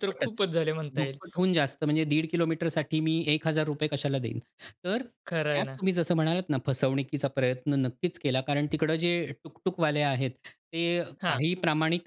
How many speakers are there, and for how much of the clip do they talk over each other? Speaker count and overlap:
2, about 8%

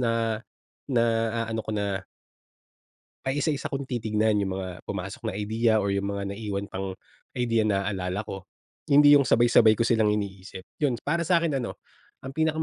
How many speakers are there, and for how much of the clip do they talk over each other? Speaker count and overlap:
1, no overlap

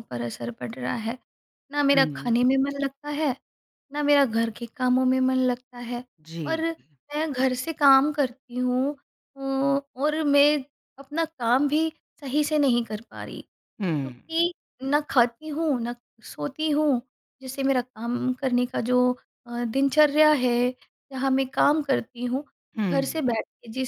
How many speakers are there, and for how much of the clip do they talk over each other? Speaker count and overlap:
2, about 4%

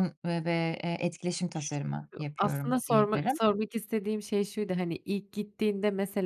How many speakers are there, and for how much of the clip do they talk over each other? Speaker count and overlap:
2, about 16%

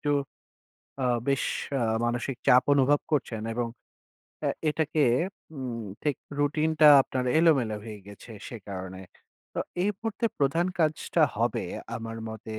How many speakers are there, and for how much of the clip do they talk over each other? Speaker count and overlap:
1, no overlap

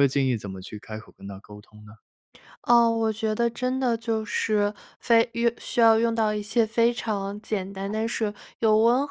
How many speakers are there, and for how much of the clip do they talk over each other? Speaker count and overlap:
2, no overlap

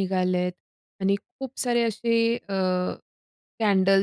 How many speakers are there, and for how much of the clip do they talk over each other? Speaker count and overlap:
1, no overlap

